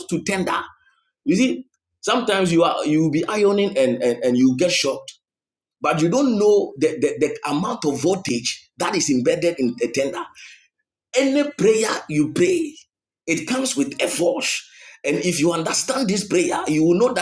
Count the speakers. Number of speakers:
1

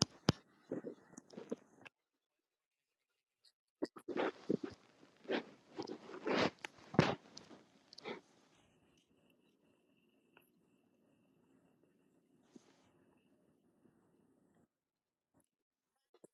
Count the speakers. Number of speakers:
0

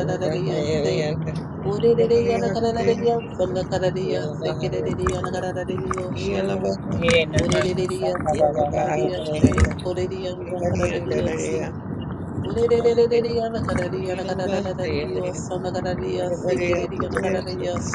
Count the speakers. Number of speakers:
3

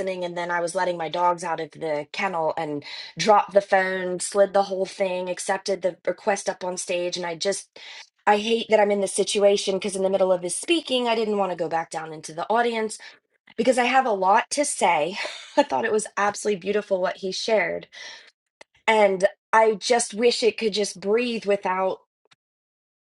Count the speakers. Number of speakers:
1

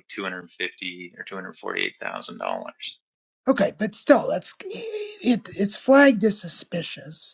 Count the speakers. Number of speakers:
2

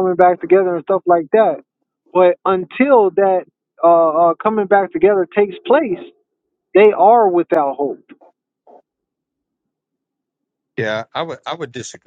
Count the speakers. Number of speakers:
2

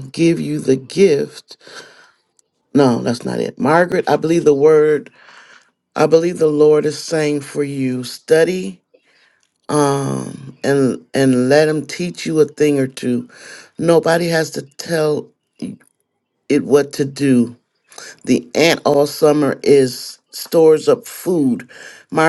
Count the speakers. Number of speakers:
1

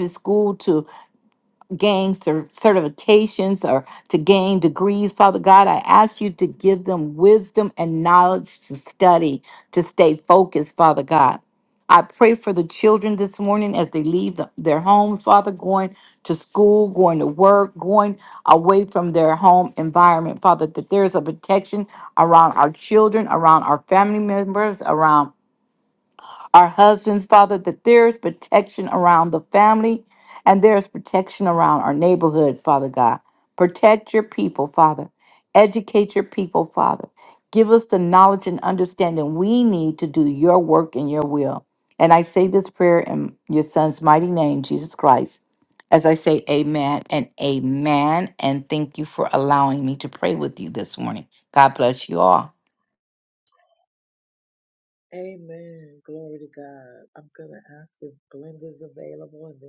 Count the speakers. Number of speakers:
2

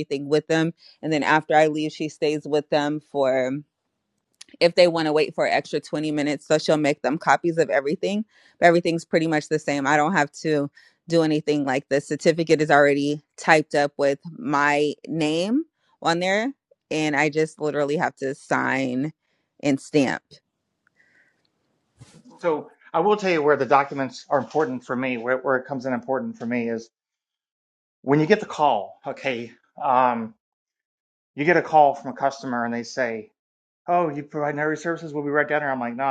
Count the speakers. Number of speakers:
2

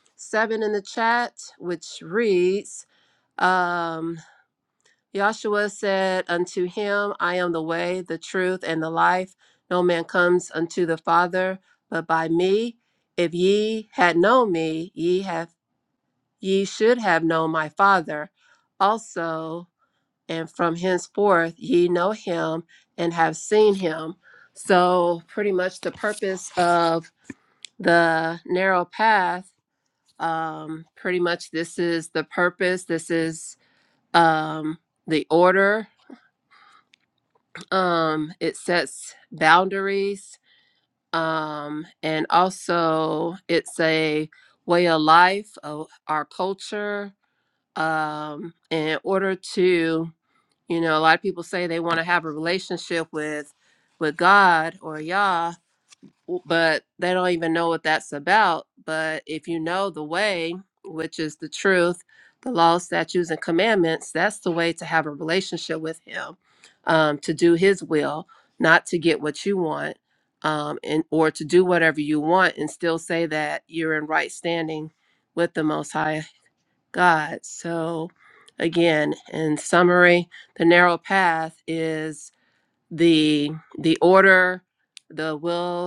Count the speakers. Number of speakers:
1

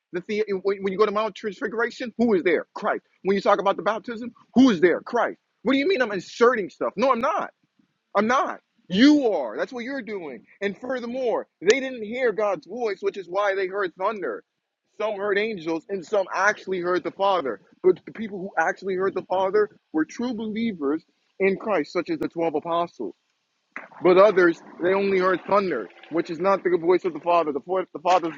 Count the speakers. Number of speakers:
1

